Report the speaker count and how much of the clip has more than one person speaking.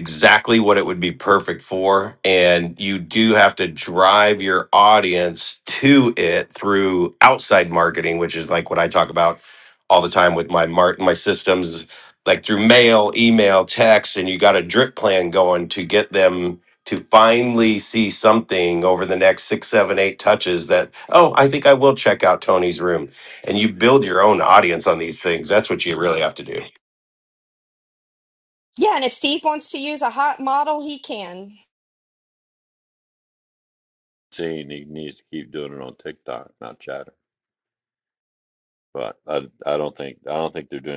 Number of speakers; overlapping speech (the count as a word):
three, no overlap